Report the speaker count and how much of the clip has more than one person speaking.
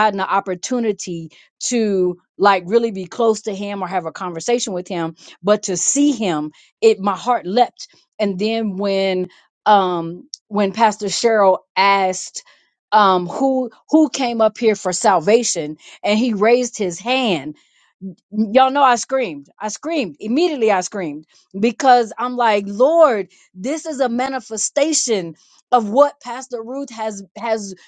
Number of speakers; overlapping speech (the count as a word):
one, no overlap